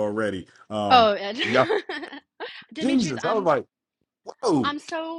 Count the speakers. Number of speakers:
2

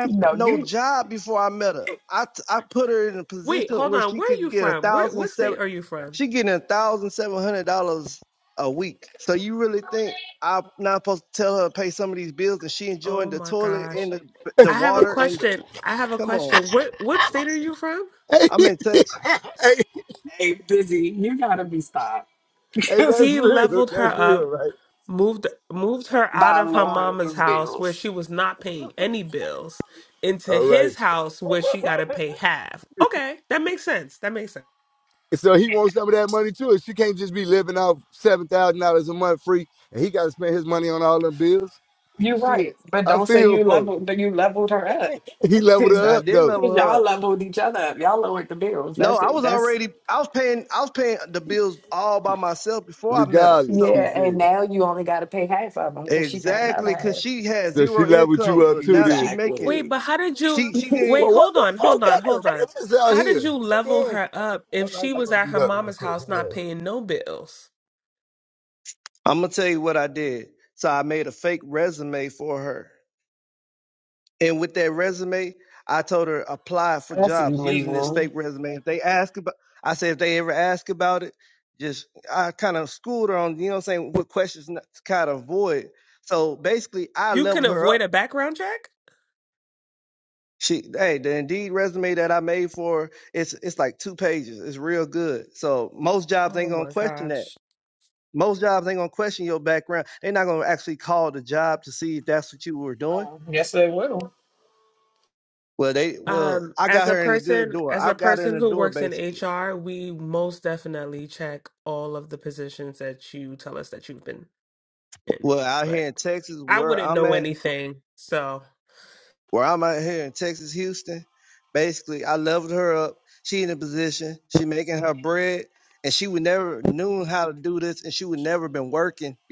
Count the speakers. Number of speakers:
4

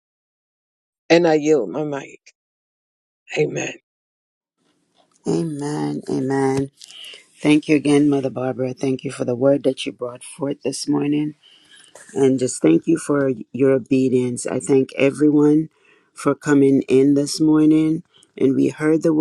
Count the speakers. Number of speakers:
2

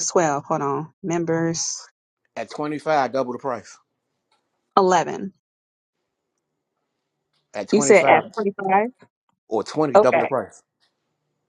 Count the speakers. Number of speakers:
2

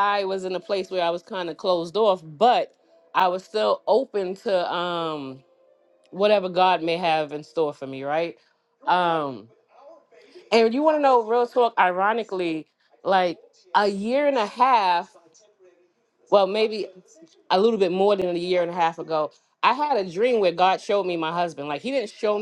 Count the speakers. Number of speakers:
1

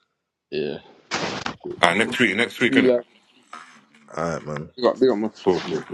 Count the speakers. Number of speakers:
3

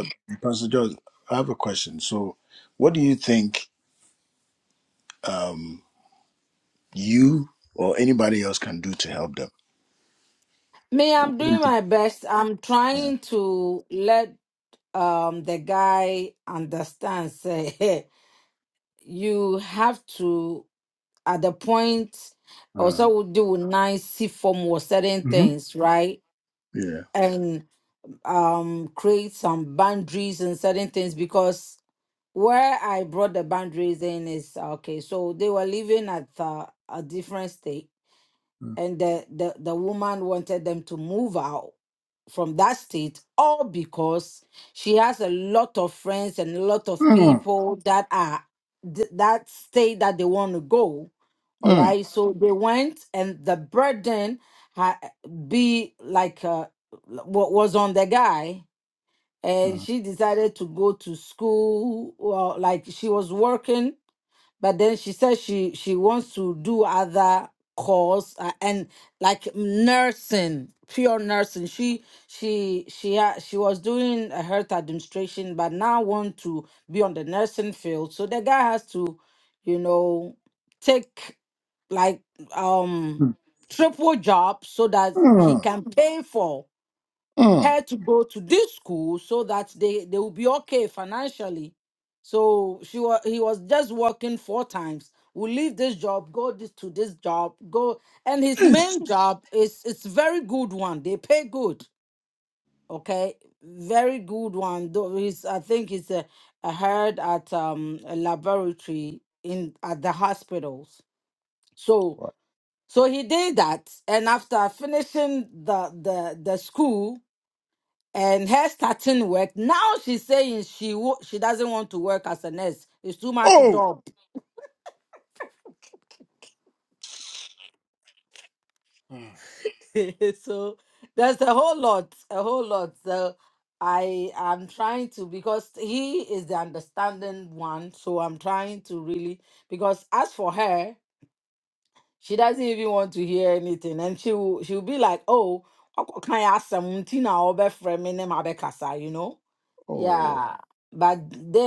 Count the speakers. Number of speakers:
2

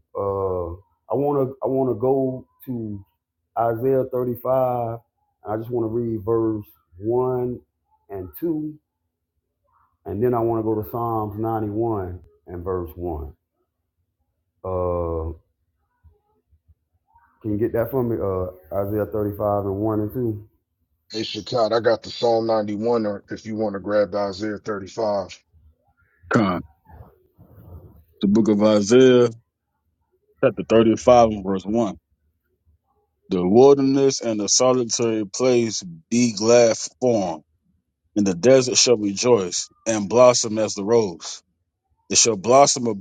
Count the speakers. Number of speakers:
3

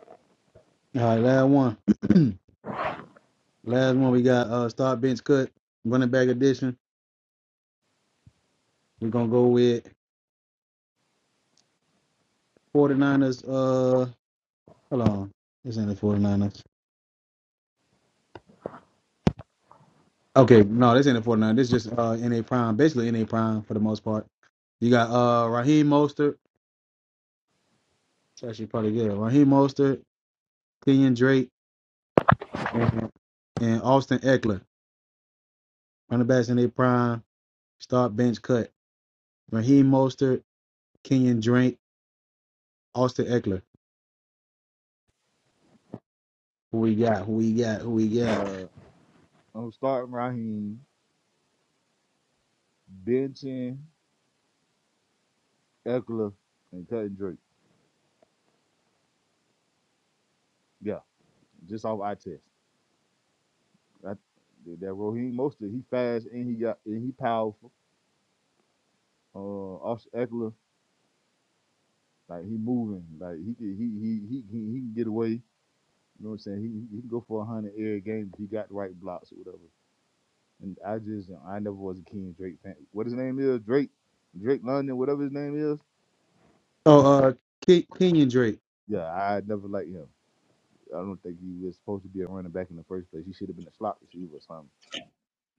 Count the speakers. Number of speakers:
2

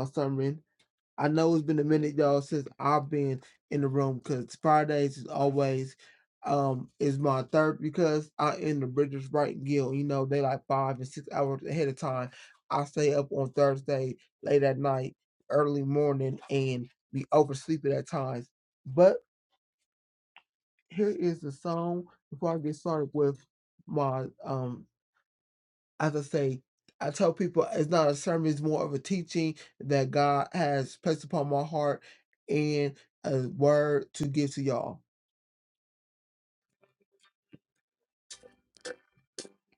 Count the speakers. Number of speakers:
1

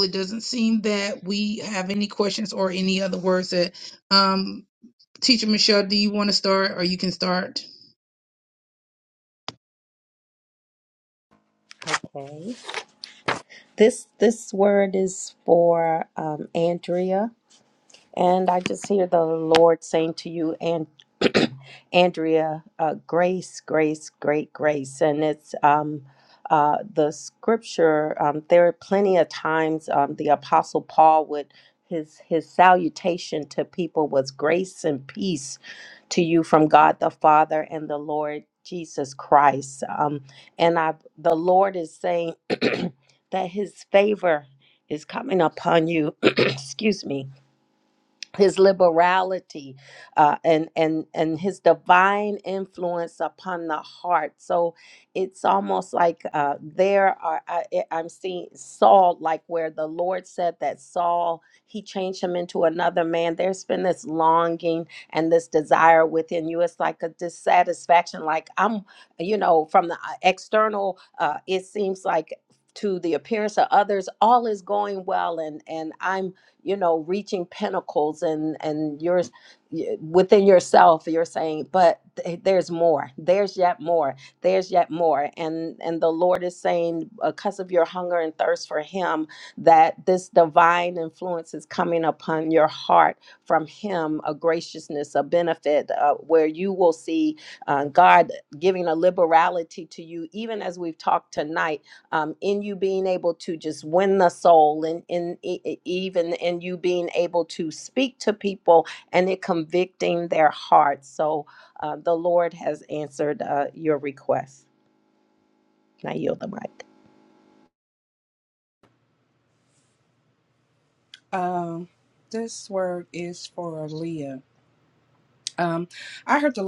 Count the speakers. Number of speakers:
3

